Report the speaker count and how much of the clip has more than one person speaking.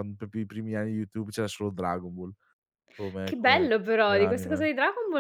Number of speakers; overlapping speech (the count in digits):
2, about 18%